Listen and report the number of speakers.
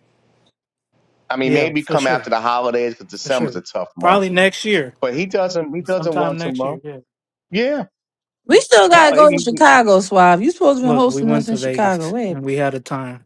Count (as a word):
three